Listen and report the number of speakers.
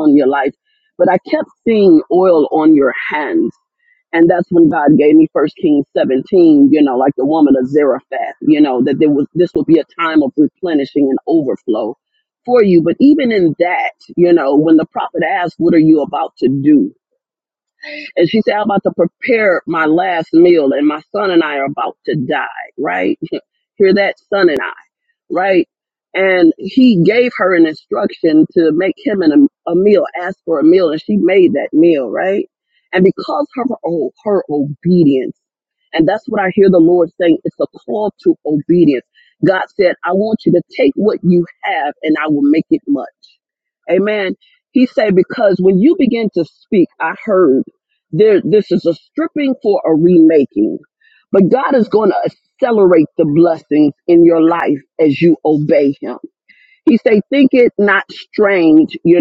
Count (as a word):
one